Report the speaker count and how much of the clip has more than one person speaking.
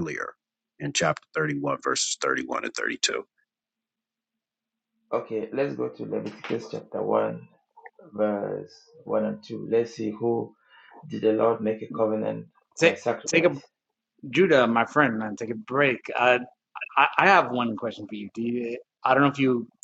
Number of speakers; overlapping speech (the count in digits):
3, about 4%